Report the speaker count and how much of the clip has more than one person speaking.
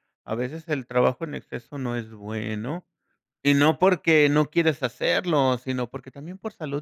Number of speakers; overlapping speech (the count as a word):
one, no overlap